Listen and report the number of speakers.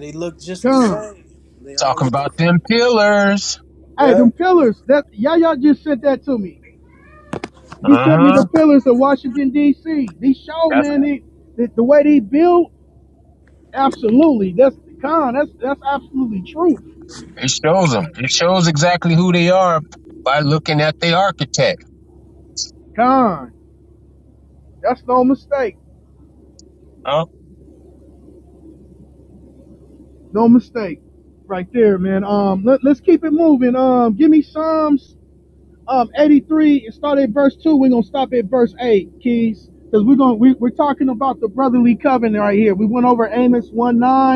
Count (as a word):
three